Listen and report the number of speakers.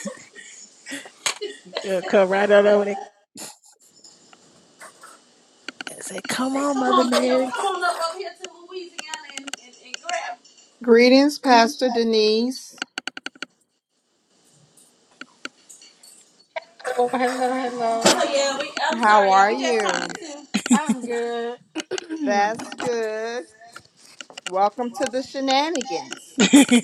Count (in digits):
4